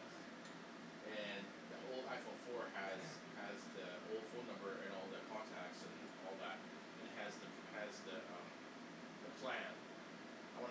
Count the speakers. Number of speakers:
1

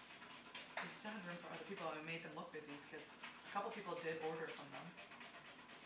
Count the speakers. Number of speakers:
1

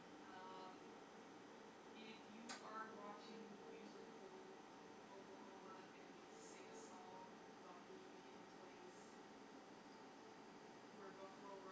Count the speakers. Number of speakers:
1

